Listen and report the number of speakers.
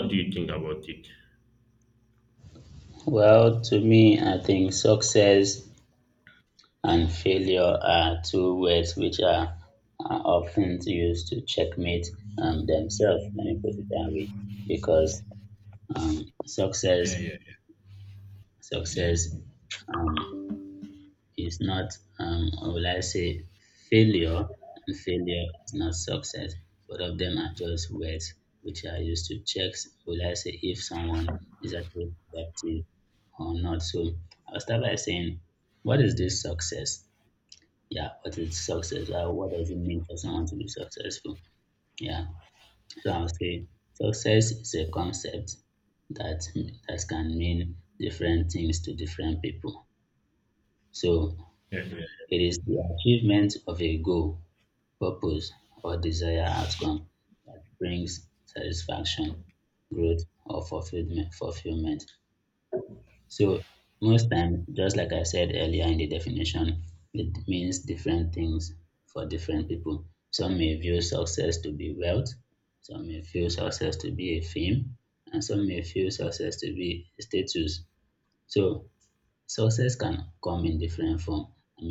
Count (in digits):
2